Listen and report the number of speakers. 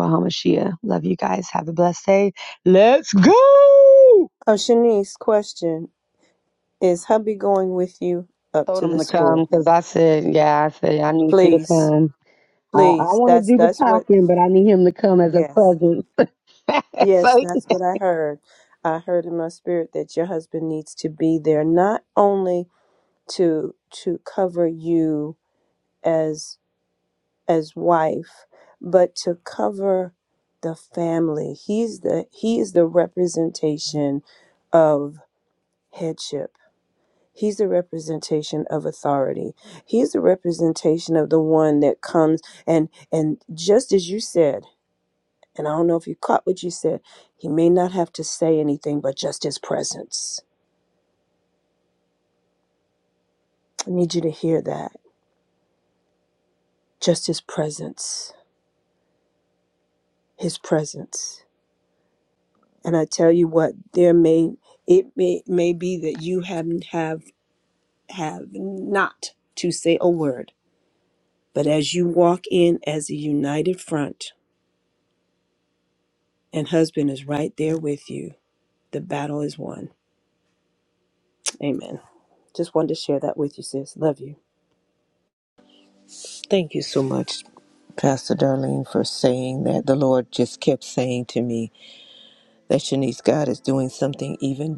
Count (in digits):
3